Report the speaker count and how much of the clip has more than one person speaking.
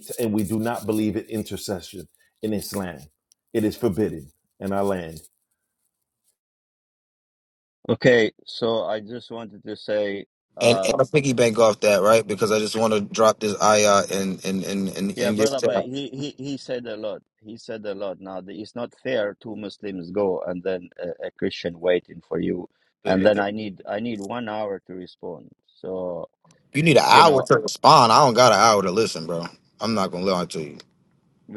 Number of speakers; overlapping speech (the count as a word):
three, about 3%